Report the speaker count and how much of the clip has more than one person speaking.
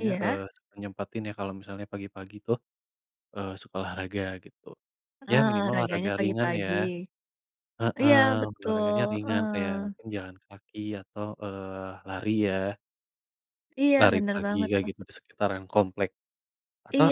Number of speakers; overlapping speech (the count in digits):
2, about 27%